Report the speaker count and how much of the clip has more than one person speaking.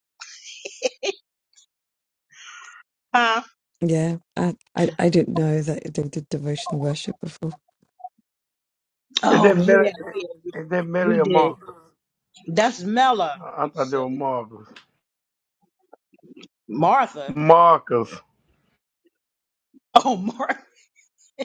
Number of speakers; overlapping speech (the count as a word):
three, about 8%